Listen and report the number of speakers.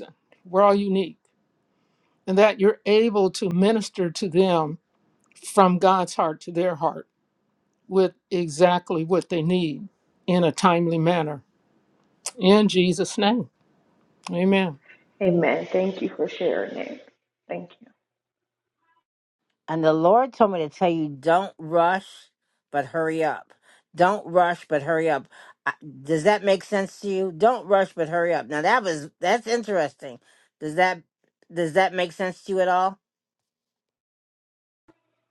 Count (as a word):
three